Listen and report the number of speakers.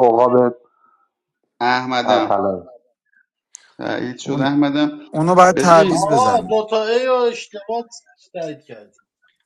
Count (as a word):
four